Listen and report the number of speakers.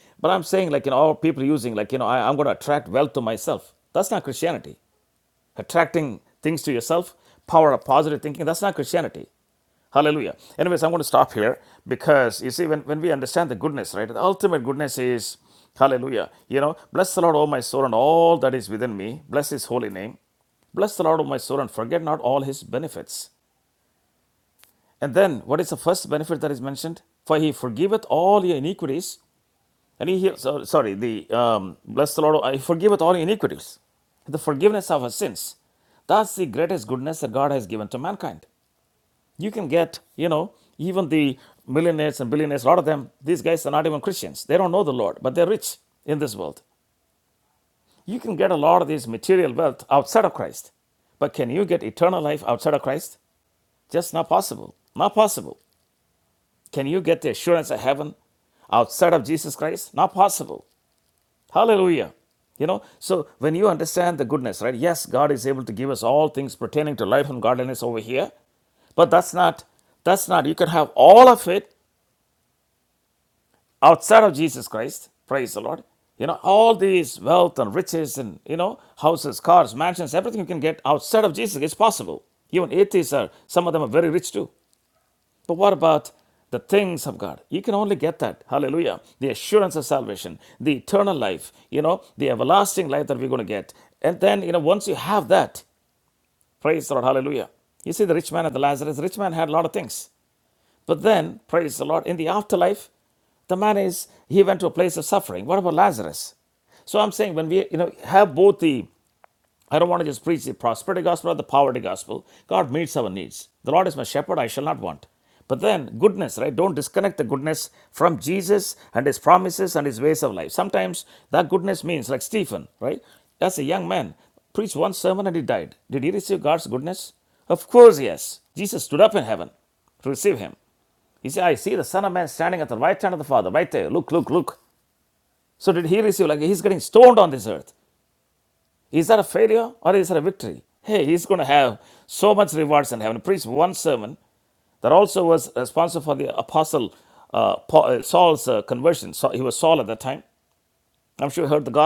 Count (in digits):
1